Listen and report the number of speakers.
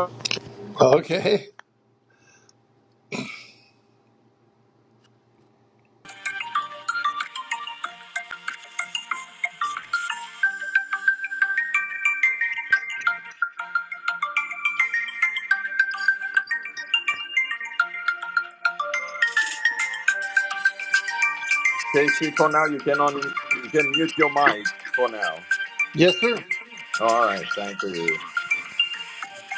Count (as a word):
two